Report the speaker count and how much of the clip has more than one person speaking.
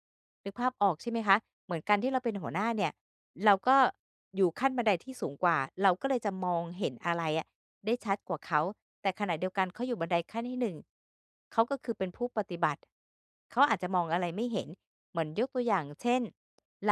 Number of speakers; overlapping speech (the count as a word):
one, no overlap